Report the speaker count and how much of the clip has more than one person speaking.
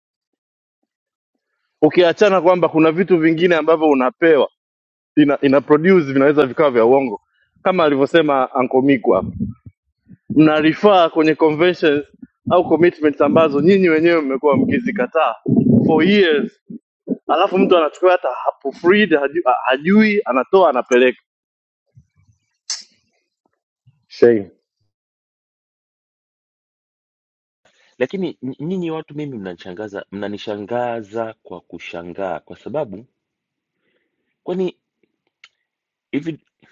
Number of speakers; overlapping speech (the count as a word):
two, no overlap